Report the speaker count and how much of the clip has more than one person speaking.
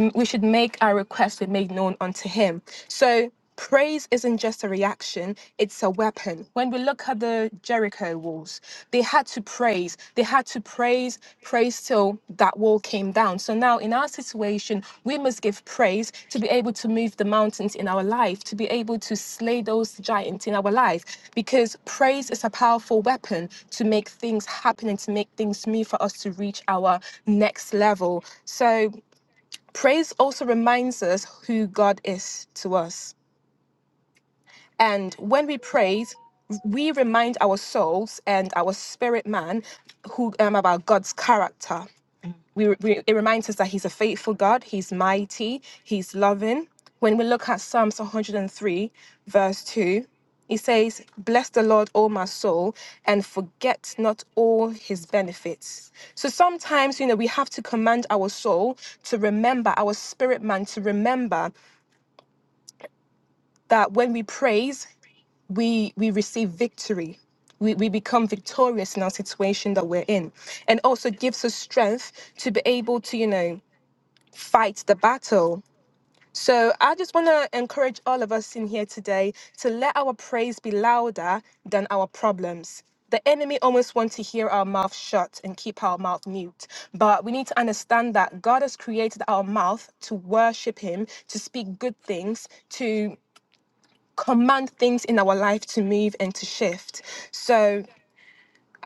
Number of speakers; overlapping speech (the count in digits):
1, no overlap